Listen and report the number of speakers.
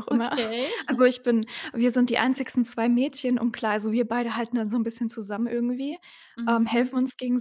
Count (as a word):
two